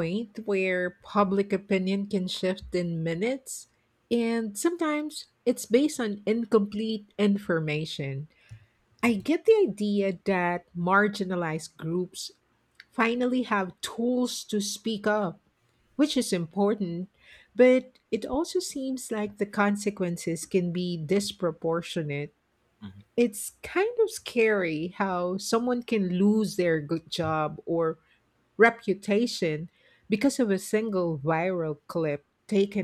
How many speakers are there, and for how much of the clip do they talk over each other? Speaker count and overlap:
1, no overlap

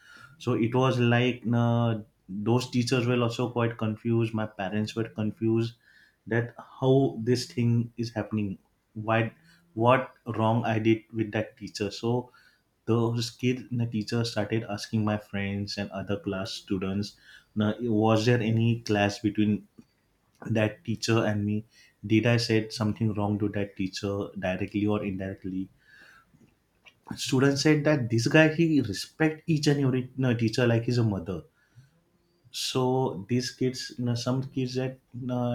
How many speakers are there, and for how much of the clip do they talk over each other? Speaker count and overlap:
1, no overlap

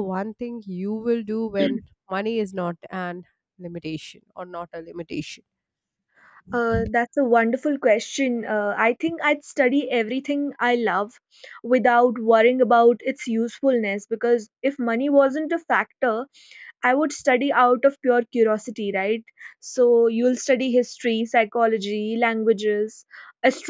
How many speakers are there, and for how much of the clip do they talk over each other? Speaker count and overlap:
2, no overlap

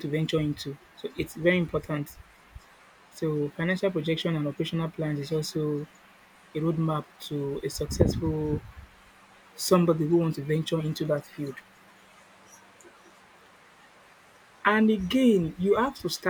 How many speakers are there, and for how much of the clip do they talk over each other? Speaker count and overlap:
1, no overlap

